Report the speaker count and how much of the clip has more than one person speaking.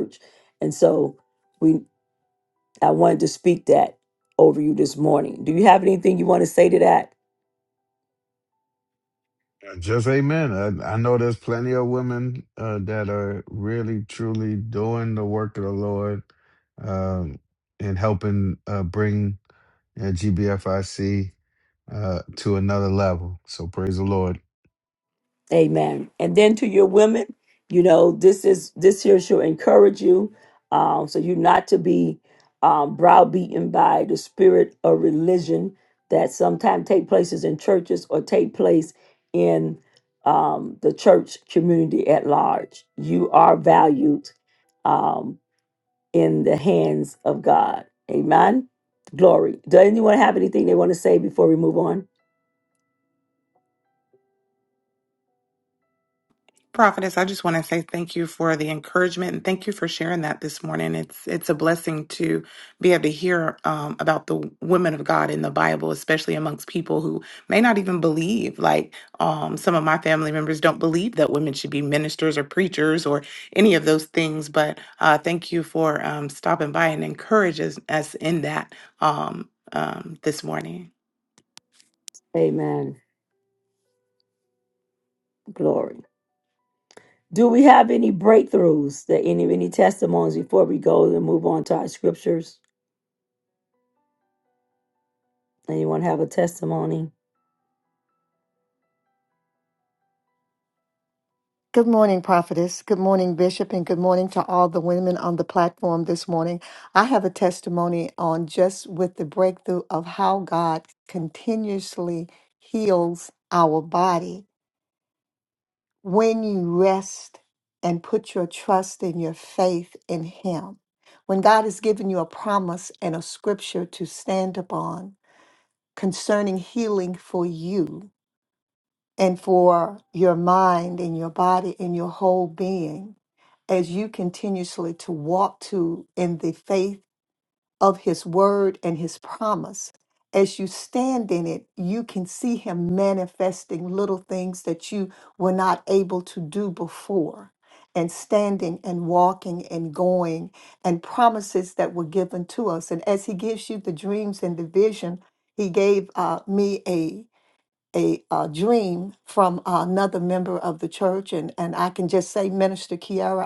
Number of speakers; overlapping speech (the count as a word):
four, no overlap